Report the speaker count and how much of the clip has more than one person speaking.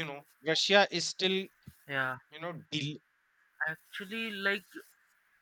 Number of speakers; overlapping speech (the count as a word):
two, no overlap